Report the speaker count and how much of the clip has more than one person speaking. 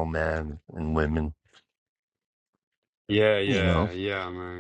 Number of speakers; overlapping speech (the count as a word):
two, about 9%